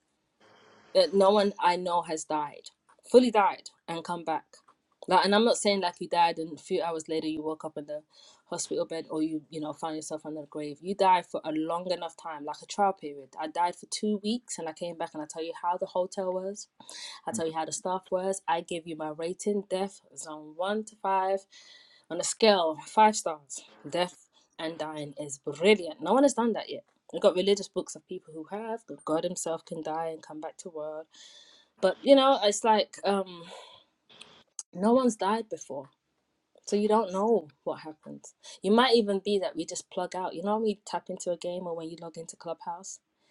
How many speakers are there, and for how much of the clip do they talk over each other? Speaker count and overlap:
one, no overlap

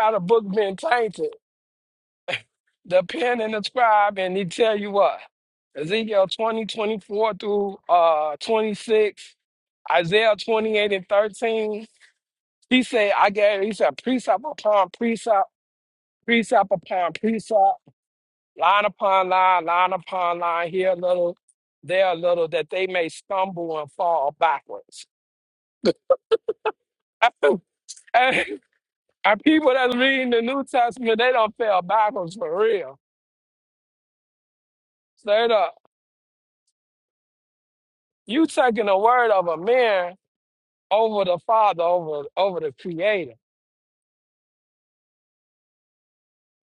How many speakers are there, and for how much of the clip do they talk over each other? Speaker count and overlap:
one, no overlap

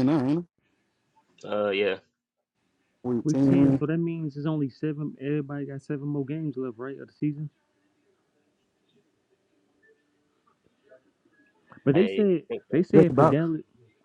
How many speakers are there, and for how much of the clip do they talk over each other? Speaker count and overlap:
three, about 13%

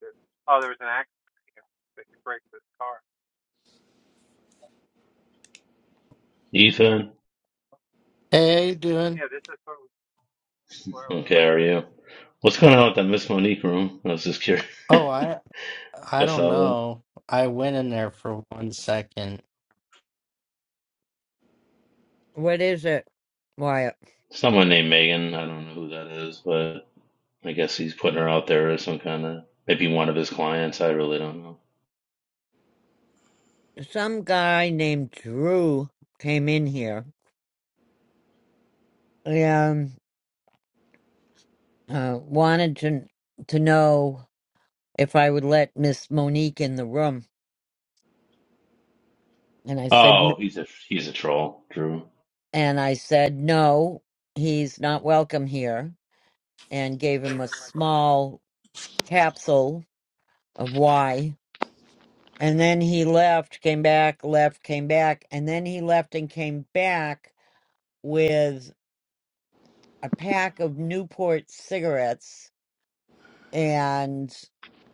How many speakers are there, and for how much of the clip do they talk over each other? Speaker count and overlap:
four, about 2%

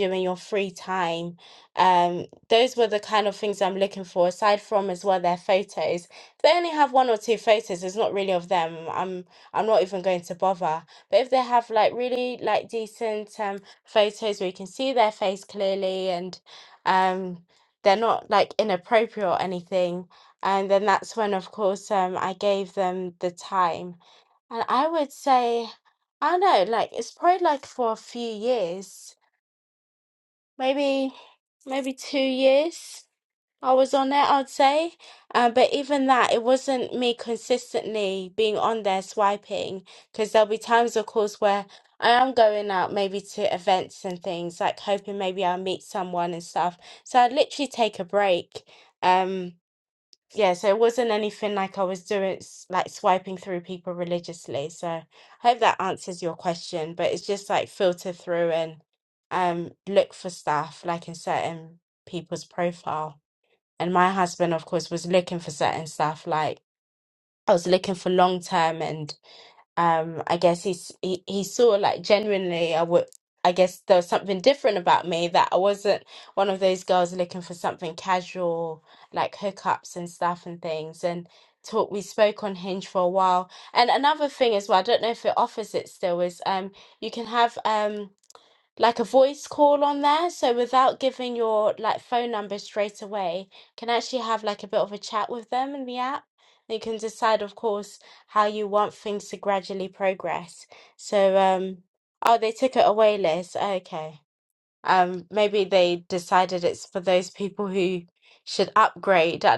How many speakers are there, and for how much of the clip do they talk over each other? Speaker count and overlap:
one, no overlap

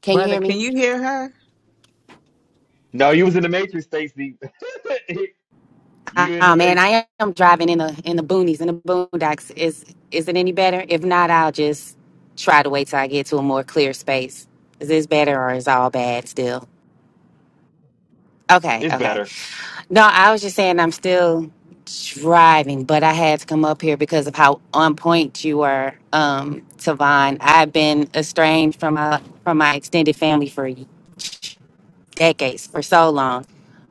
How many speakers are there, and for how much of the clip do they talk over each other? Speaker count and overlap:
three, about 4%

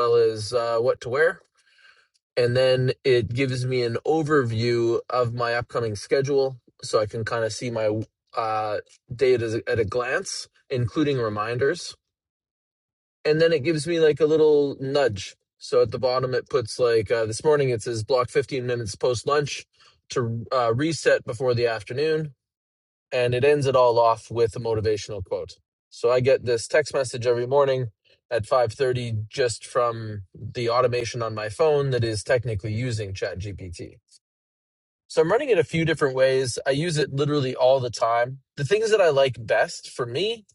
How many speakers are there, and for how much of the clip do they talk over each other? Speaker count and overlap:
one, no overlap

